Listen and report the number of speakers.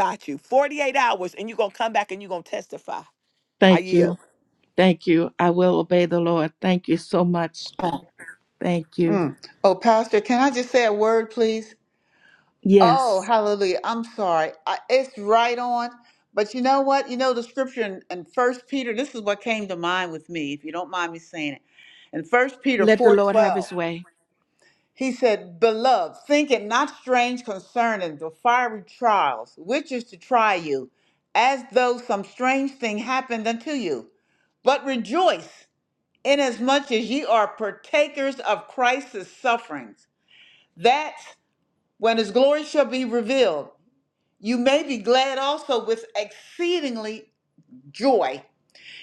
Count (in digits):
3